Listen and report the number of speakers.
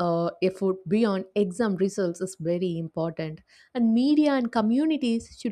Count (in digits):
1